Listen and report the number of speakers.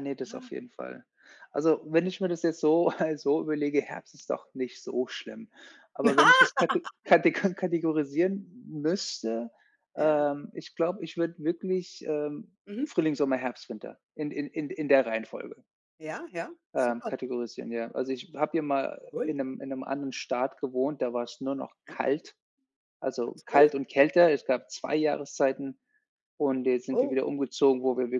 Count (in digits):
2